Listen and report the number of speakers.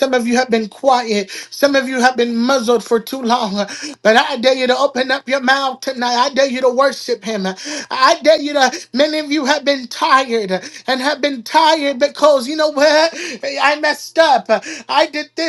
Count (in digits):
1